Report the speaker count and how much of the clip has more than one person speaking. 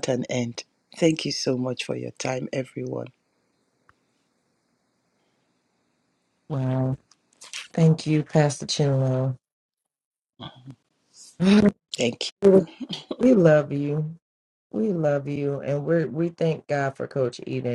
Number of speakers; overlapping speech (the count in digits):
2, no overlap